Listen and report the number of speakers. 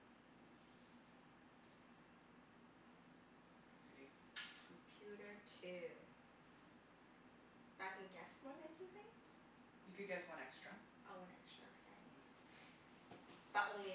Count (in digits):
2